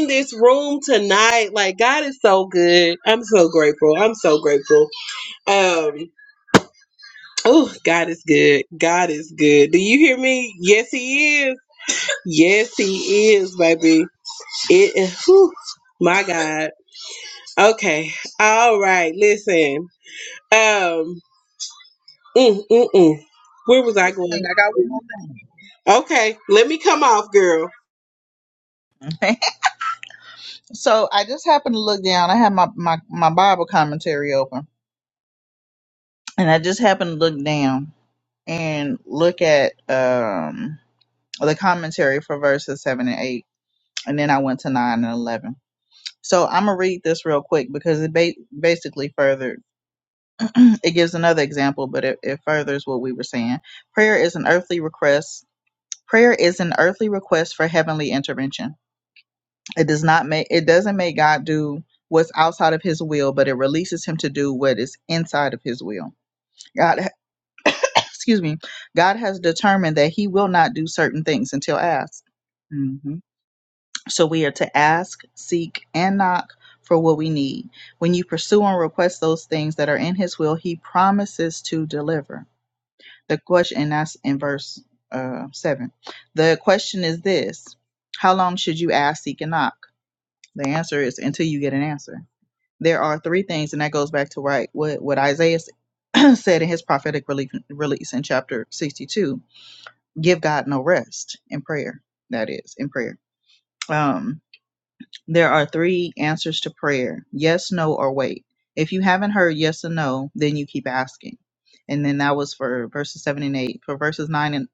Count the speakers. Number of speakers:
2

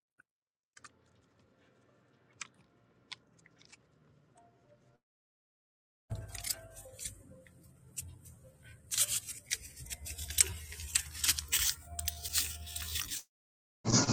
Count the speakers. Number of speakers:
0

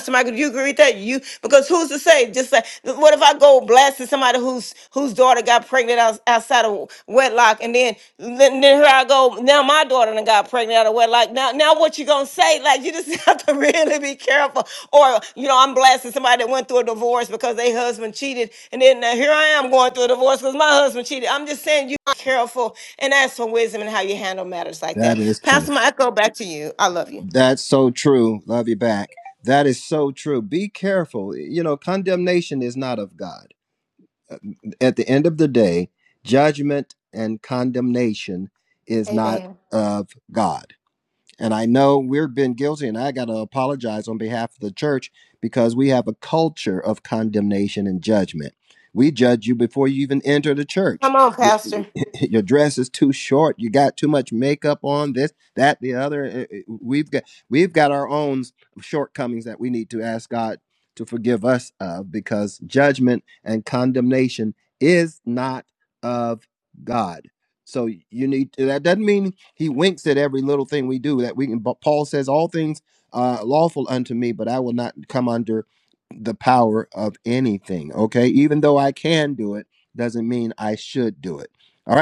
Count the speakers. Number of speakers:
2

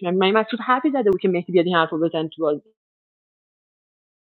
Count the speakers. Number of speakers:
1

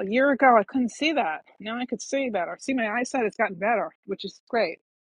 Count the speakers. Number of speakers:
1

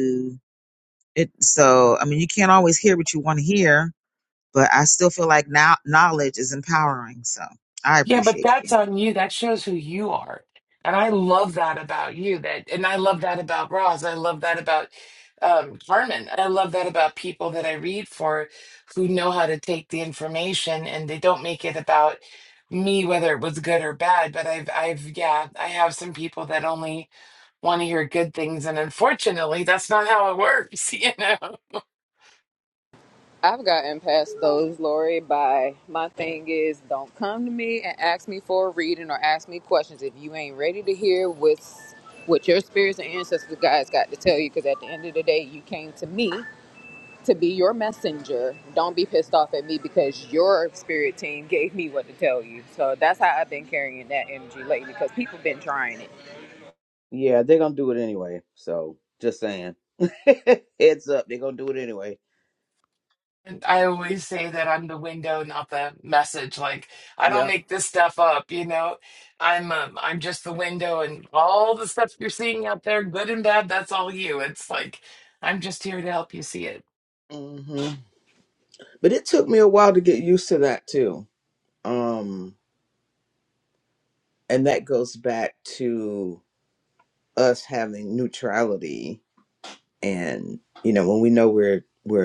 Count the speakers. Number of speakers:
4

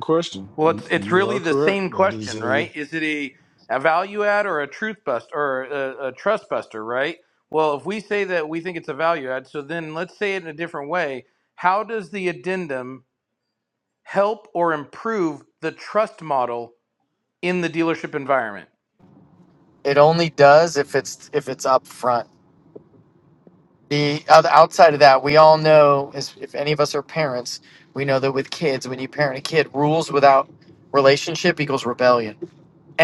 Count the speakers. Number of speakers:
3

